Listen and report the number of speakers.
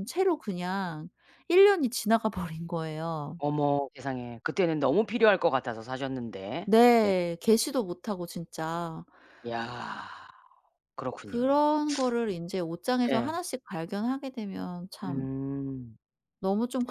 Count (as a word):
two